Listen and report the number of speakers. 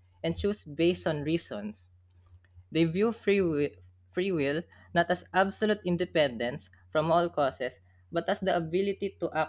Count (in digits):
1